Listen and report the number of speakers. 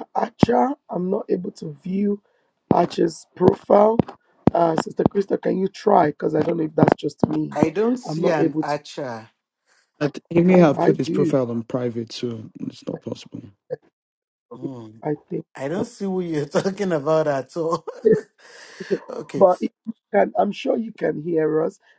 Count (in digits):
3